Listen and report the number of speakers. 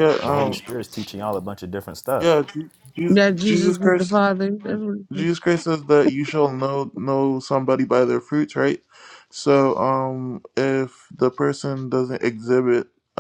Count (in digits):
3